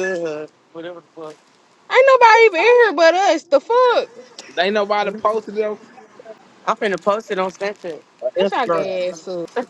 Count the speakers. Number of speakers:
3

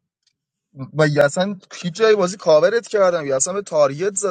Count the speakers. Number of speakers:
1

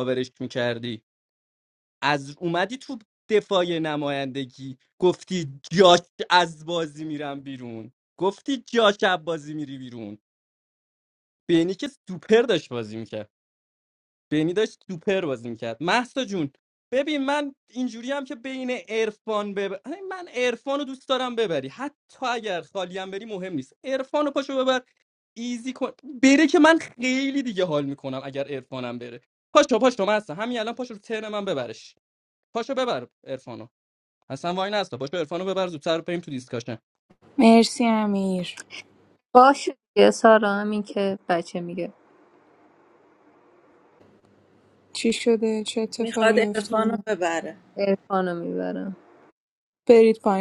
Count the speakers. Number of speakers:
4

